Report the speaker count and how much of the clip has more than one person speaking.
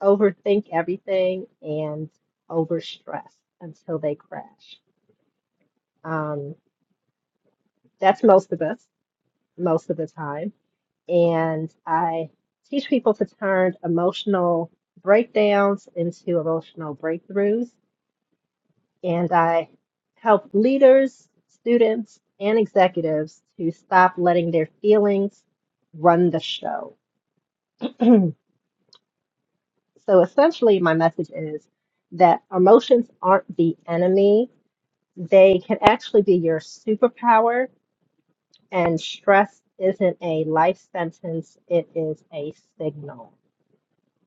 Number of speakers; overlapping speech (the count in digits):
1, no overlap